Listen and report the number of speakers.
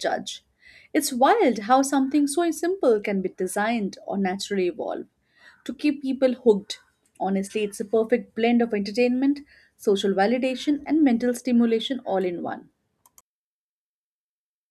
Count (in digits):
1